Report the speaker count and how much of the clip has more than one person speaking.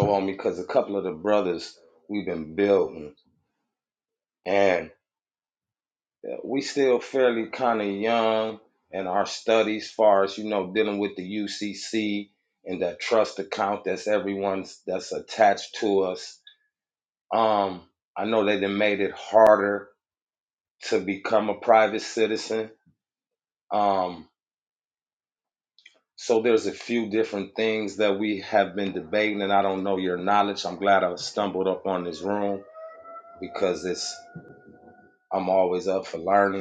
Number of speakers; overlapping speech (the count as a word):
one, no overlap